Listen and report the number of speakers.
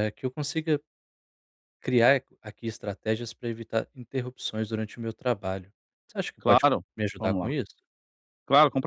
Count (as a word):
two